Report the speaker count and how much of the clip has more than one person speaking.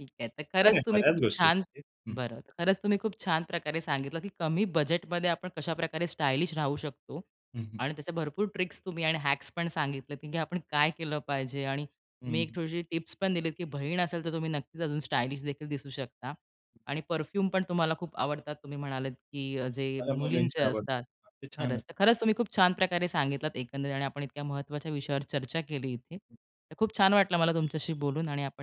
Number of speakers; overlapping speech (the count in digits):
2, about 8%